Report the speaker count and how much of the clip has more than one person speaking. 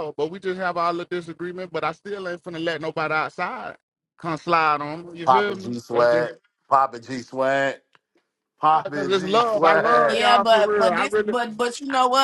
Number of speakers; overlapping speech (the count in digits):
3, about 29%